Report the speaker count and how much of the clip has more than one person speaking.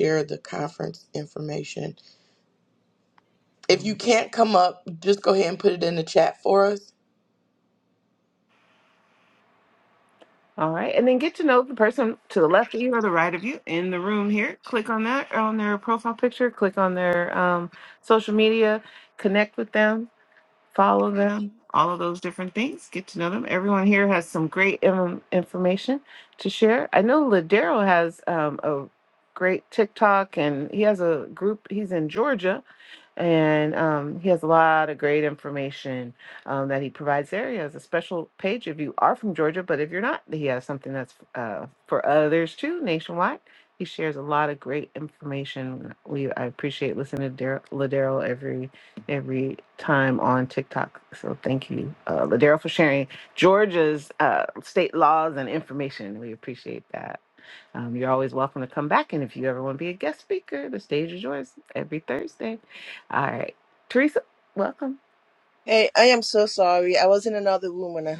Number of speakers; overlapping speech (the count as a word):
three, no overlap